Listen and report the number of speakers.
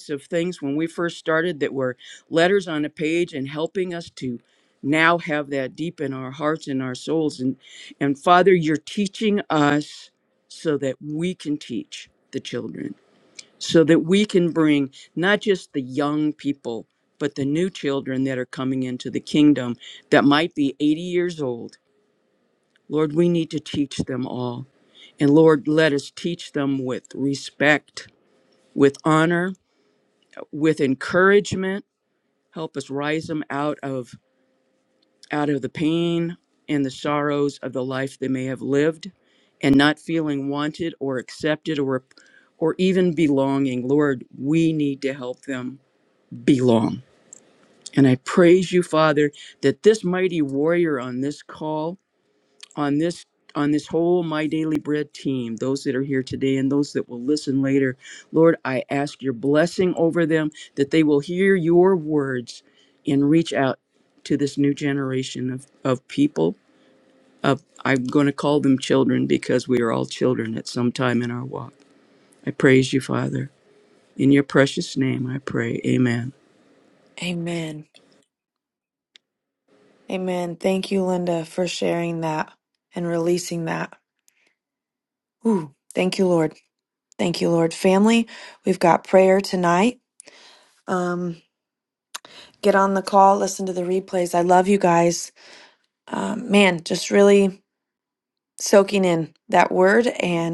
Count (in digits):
2